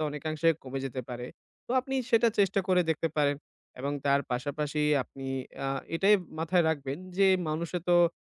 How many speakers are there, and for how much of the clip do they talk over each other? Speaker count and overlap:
one, no overlap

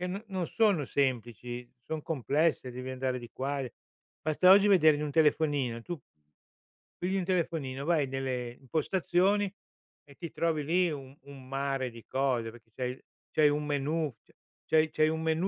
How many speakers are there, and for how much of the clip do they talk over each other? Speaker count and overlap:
one, no overlap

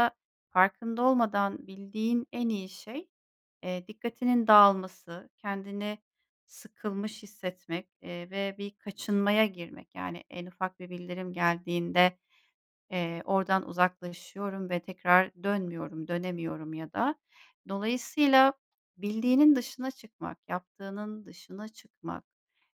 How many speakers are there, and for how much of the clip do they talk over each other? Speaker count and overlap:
one, no overlap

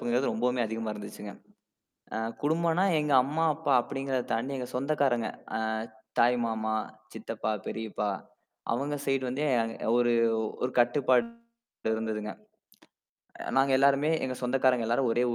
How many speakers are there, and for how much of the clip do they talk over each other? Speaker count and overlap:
one, no overlap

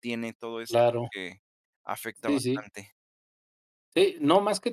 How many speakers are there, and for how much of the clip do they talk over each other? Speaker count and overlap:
two, about 8%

